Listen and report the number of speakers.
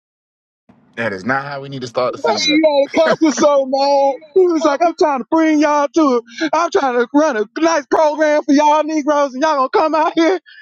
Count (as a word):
two